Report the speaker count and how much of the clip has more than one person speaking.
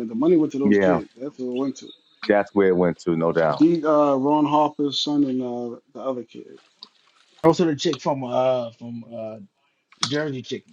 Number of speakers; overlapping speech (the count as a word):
three, about 4%